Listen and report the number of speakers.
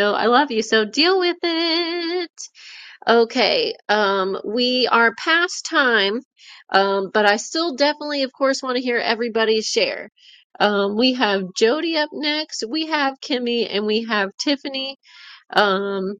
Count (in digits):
1